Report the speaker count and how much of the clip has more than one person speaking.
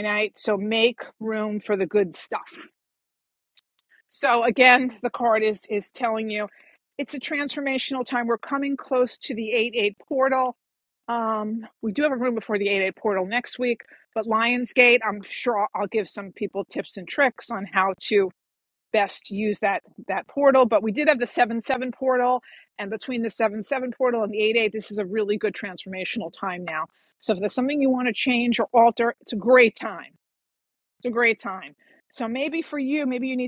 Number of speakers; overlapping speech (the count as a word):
one, no overlap